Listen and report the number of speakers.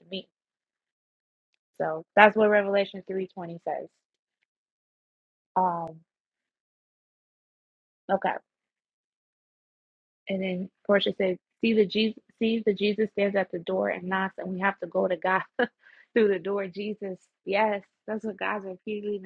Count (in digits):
1